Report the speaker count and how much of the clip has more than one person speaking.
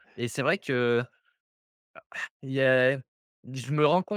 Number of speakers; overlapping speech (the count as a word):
one, no overlap